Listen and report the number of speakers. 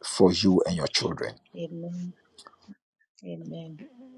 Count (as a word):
two